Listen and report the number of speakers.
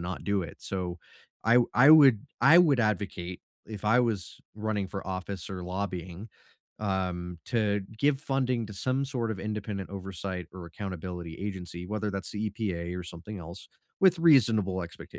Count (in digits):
1